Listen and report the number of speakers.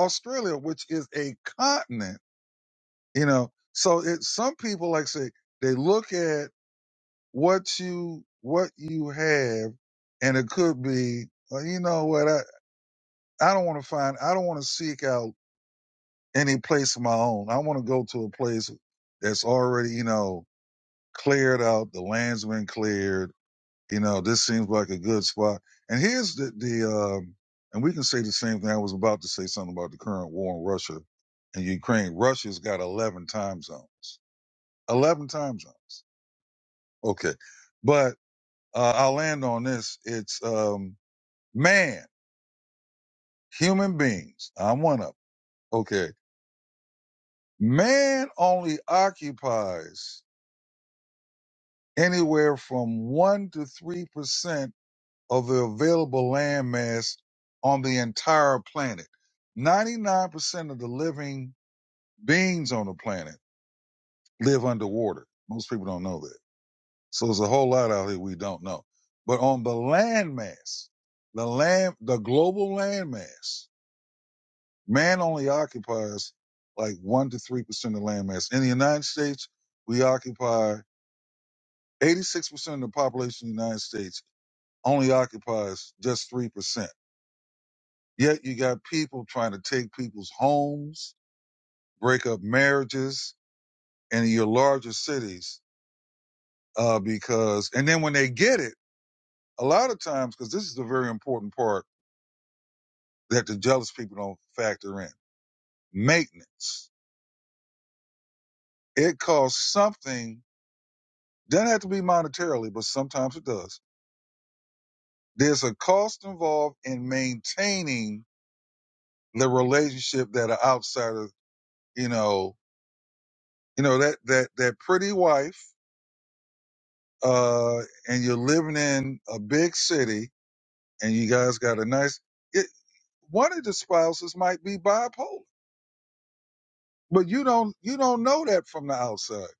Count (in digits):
1